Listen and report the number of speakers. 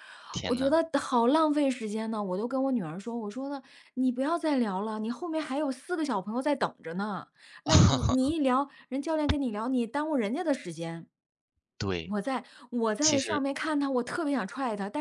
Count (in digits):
2